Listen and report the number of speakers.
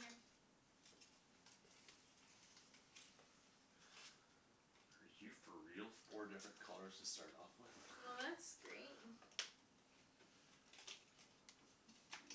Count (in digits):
2